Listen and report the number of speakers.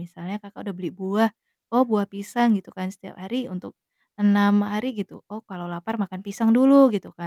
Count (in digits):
1